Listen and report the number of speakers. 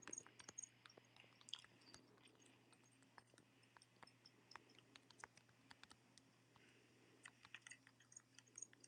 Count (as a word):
zero